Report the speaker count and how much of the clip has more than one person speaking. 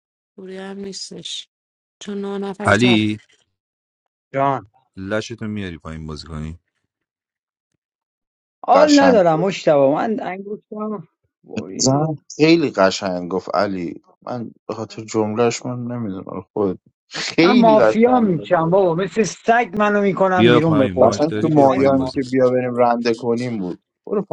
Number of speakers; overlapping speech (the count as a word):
four, about 18%